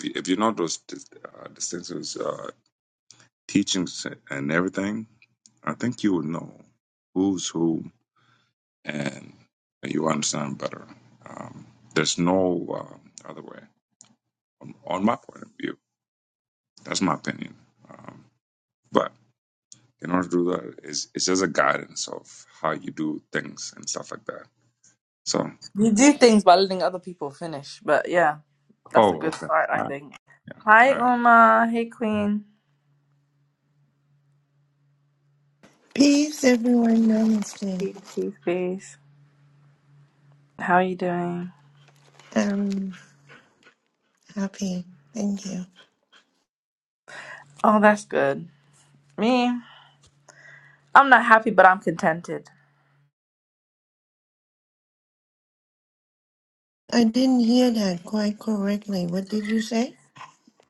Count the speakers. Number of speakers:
3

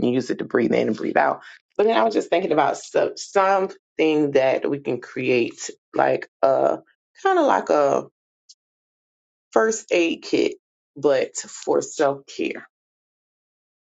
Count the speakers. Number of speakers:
1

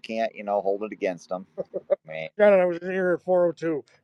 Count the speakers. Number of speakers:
2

